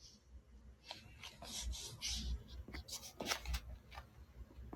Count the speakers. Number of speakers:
zero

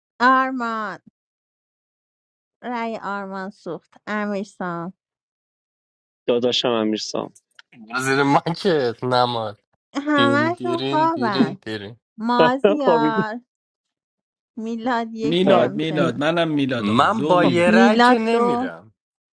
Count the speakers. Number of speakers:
four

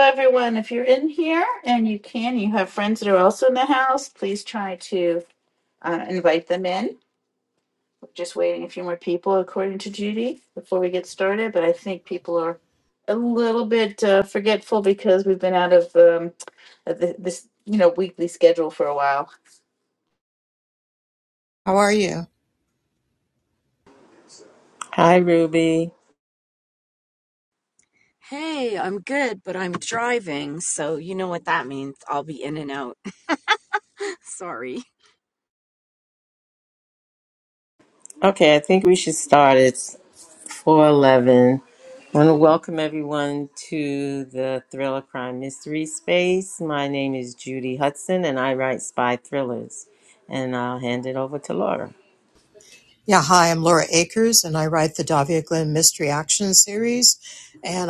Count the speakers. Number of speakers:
four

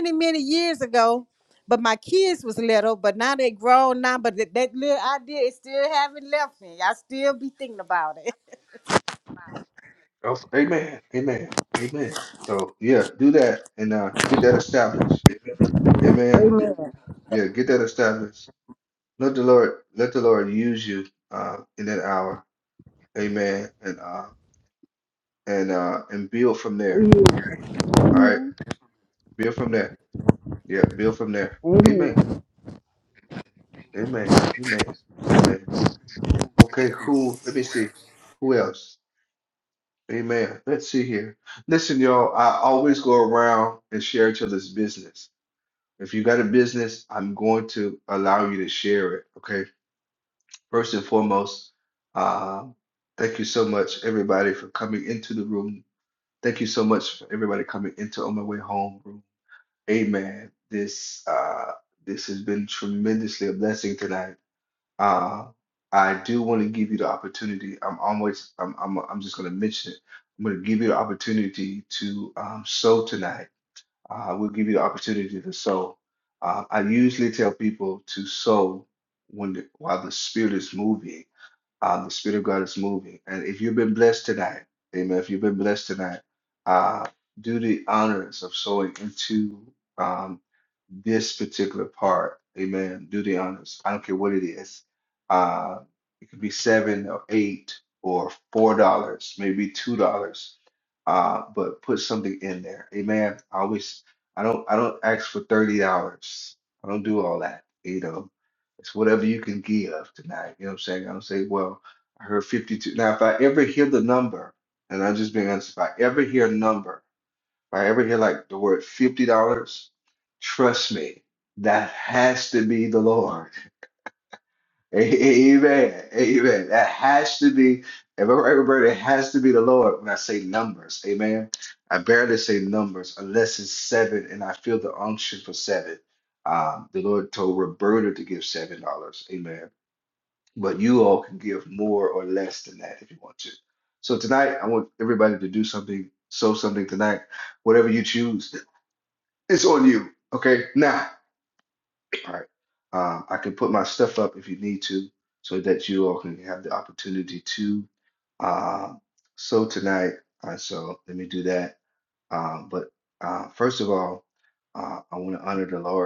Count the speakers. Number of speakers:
two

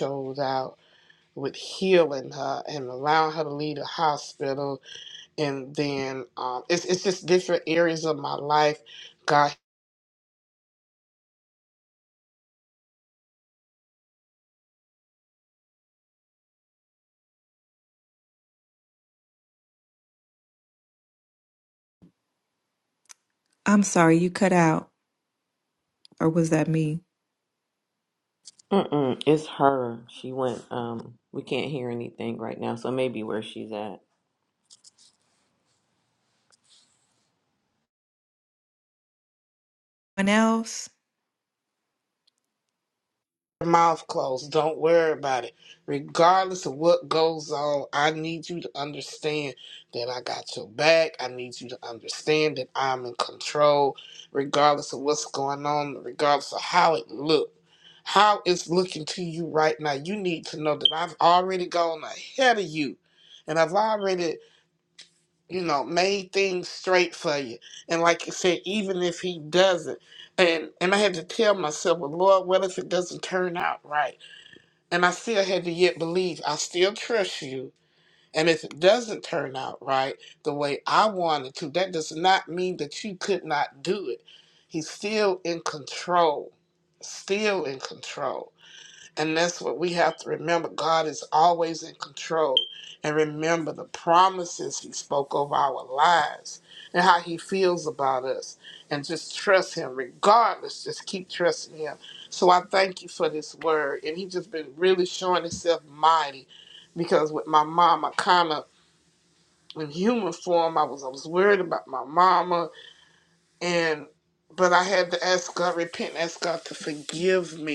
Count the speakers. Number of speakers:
three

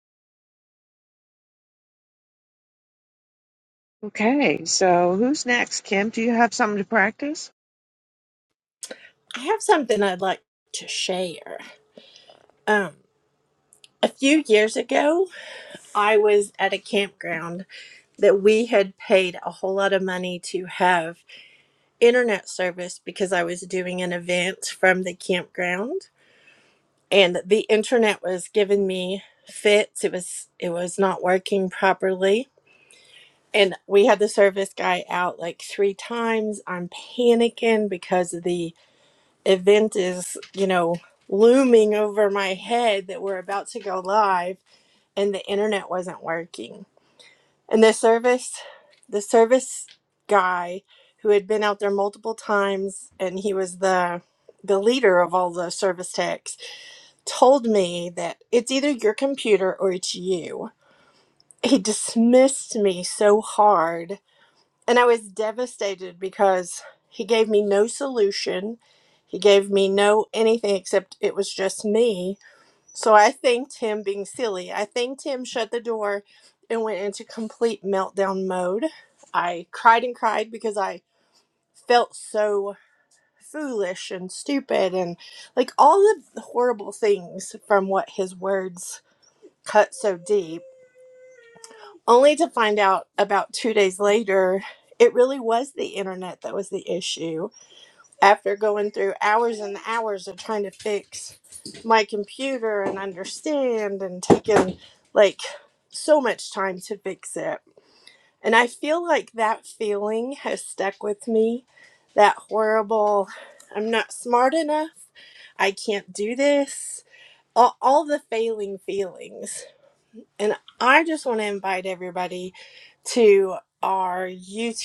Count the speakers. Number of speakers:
two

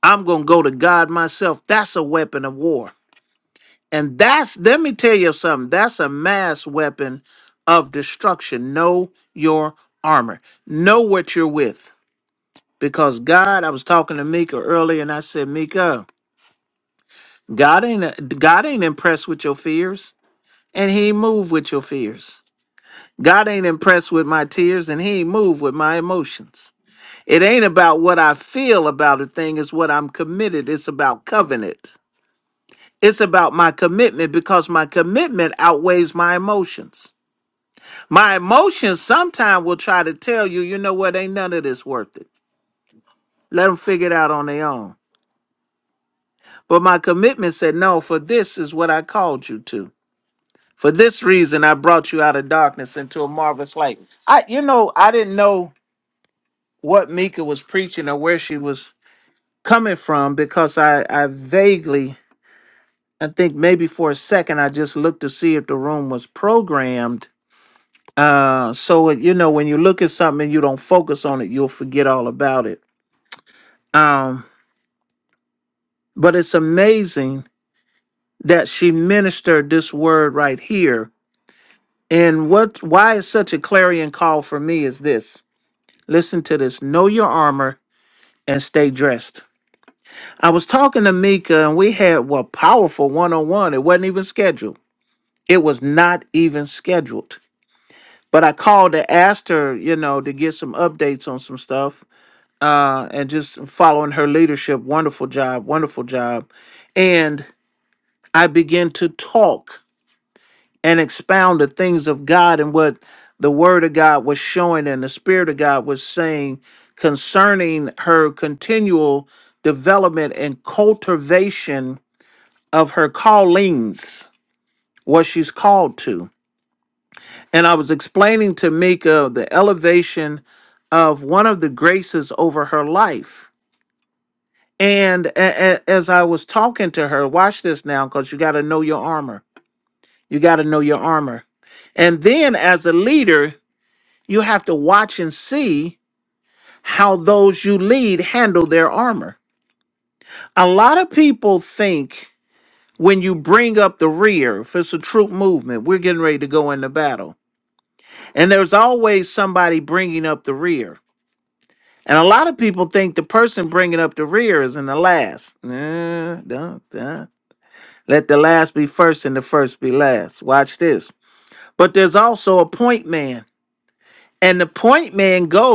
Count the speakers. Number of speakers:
one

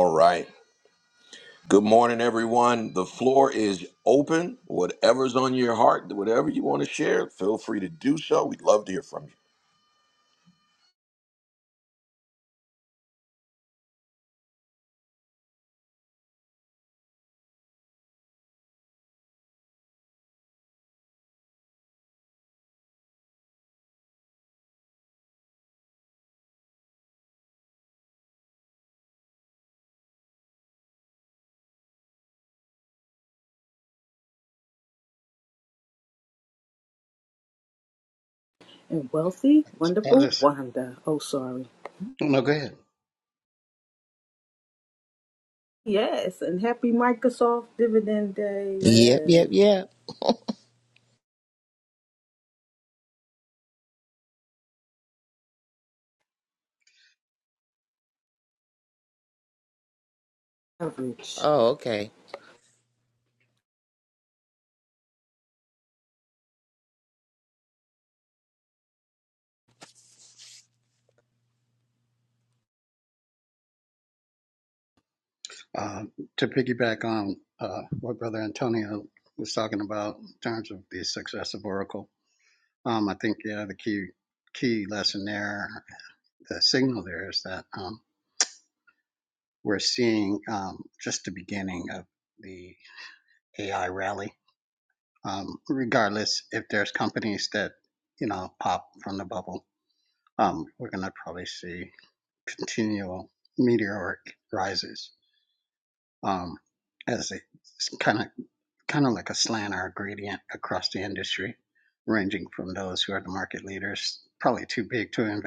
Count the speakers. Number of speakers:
four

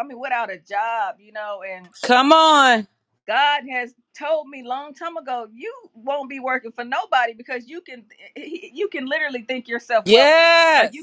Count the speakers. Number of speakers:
two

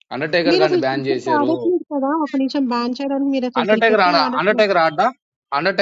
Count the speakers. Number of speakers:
two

